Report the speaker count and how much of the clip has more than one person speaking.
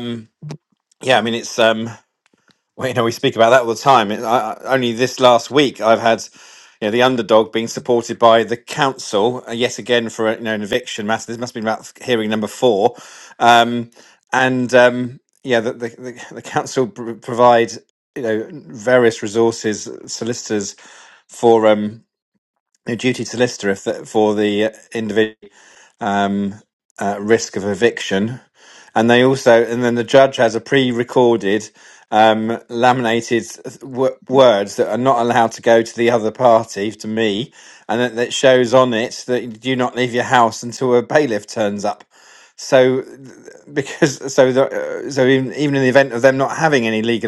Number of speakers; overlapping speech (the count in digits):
1, no overlap